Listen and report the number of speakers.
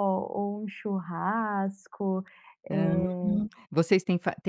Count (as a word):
two